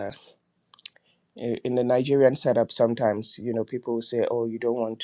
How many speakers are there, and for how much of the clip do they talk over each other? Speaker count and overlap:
1, no overlap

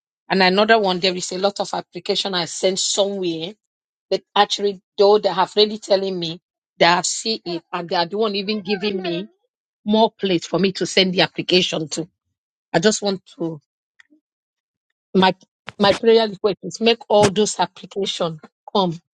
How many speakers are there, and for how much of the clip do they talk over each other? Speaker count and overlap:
1, no overlap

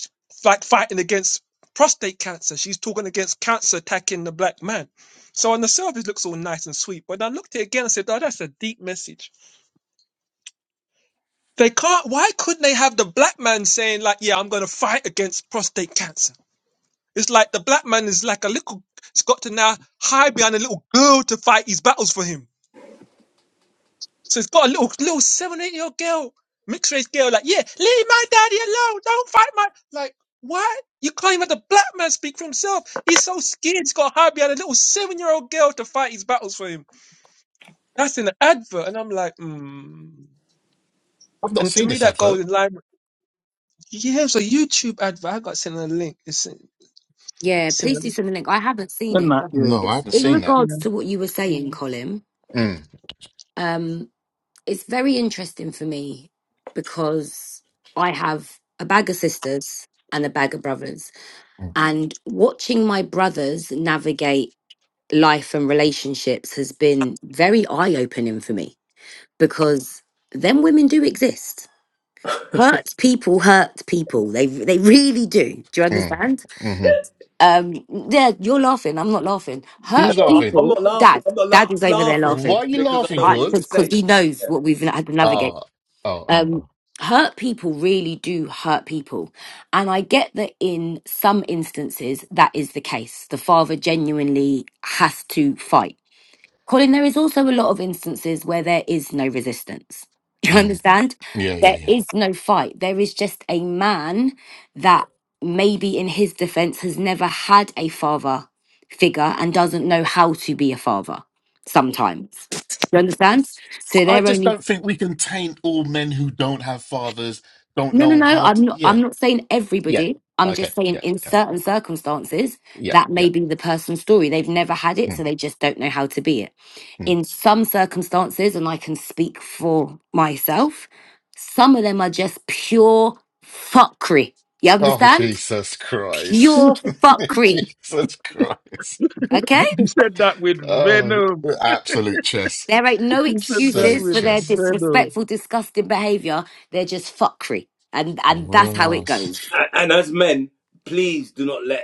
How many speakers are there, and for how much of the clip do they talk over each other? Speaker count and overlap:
5, about 11%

